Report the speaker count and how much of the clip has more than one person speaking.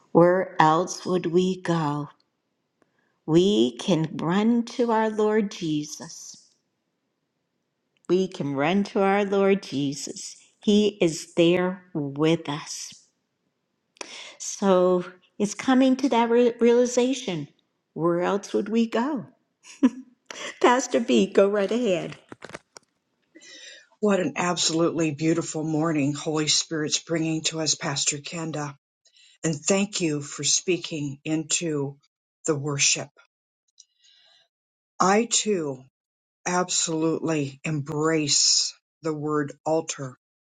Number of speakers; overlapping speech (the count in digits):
2, no overlap